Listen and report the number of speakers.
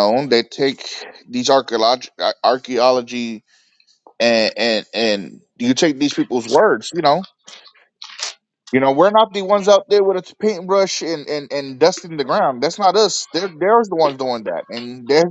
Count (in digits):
1